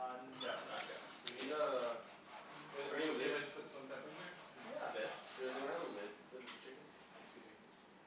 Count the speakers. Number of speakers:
3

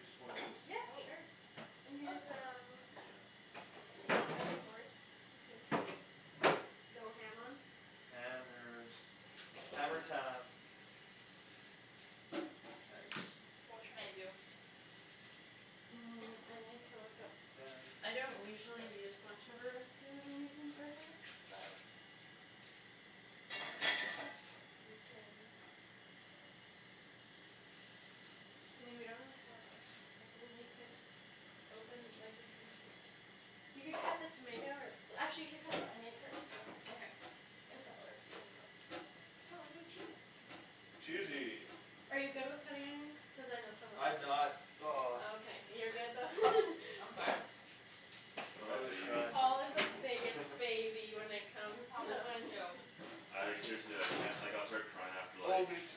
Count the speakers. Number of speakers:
4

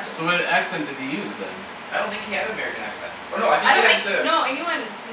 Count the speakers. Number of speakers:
3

